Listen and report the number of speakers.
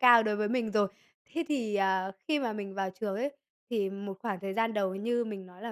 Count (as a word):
one